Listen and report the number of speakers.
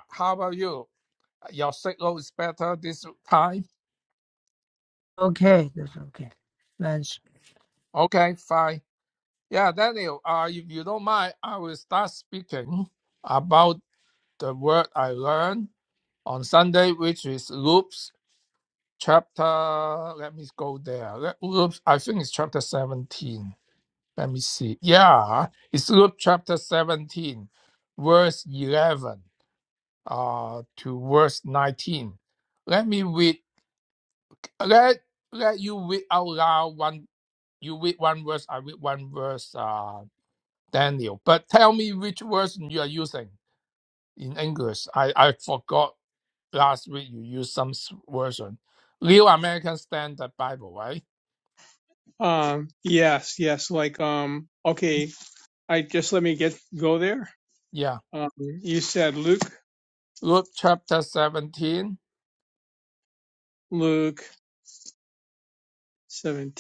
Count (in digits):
3